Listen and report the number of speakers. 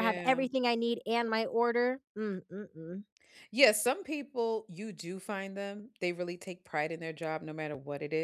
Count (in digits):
2